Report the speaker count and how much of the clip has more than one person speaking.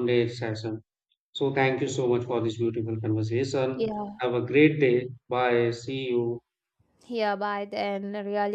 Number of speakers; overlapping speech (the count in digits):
2, about 1%